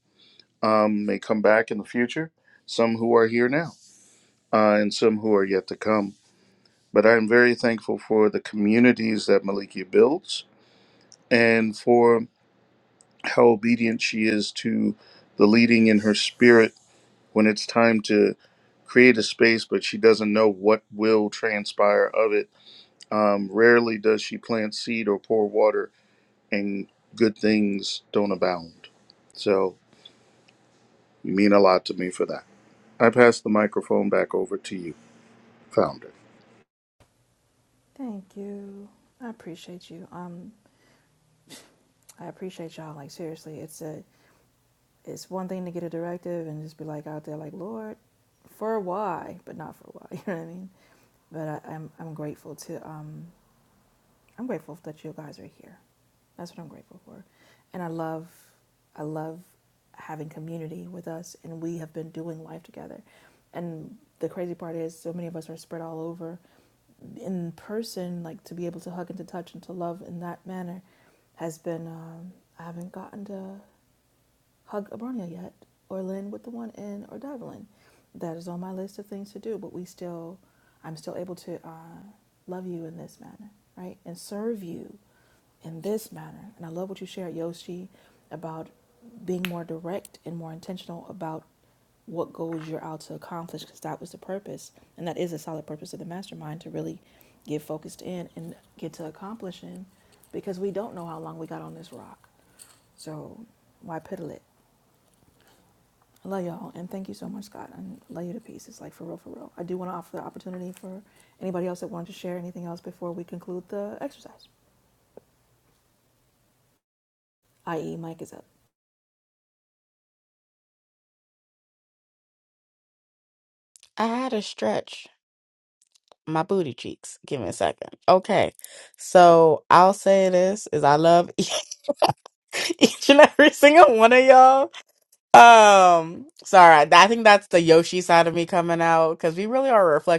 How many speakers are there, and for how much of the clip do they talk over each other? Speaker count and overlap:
3, no overlap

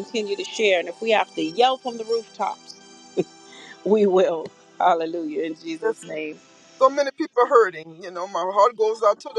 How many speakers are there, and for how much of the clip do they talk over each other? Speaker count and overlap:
2, about 1%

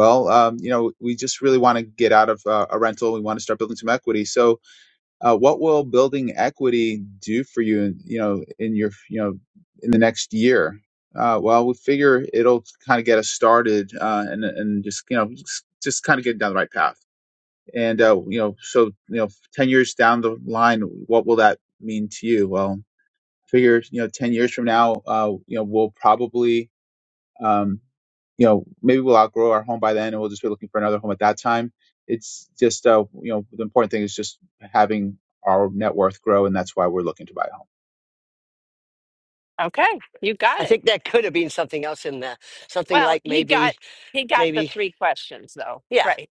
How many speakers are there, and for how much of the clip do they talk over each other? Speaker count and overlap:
3, about 4%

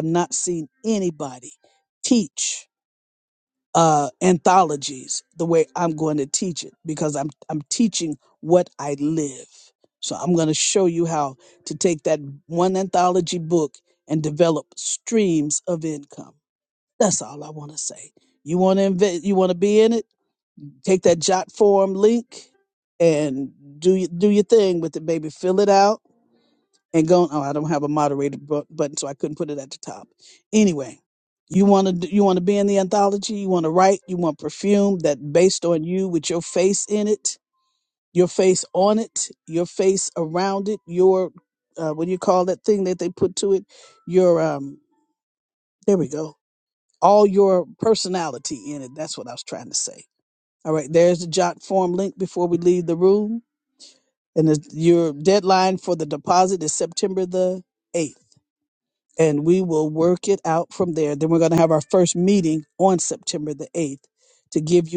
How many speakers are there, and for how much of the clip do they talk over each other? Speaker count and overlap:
1, no overlap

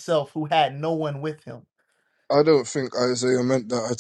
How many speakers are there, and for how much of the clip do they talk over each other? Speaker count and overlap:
2, no overlap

